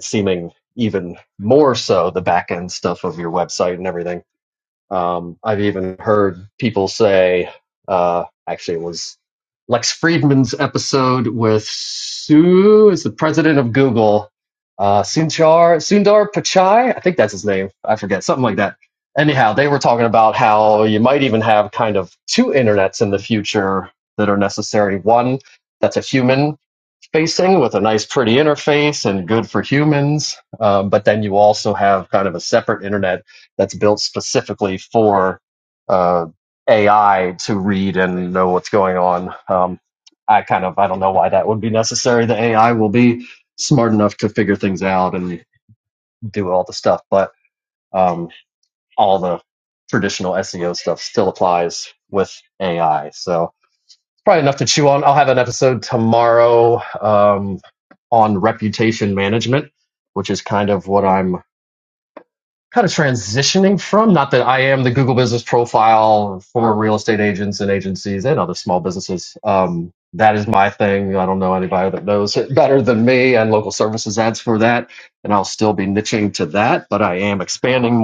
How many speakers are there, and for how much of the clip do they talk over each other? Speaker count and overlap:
one, no overlap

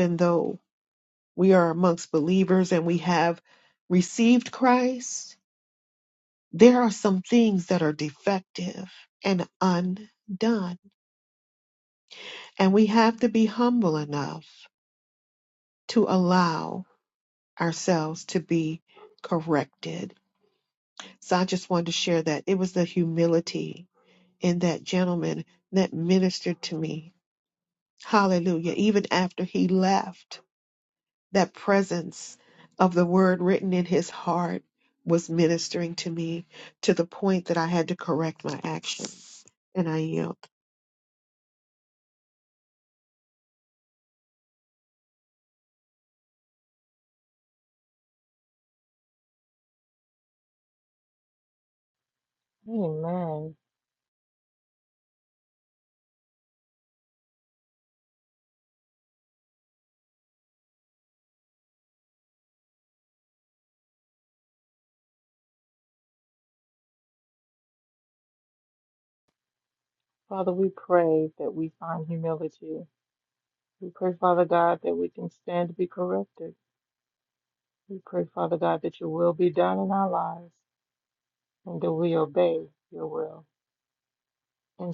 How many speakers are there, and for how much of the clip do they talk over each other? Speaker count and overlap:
two, no overlap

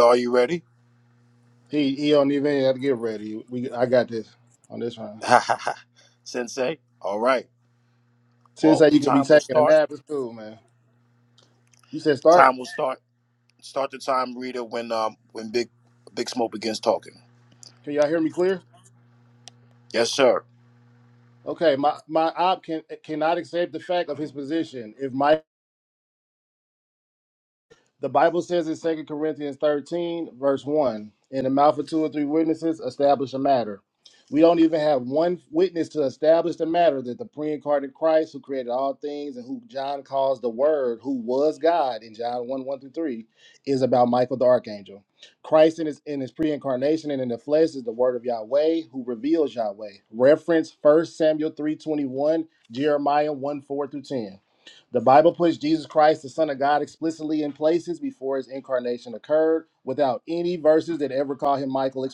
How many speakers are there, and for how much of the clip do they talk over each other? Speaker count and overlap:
two, about 2%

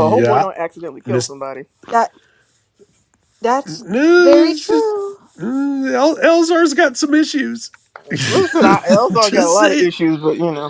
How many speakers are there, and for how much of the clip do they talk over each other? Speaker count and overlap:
three, about 19%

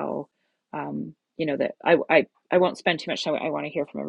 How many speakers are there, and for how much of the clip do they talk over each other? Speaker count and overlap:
one, no overlap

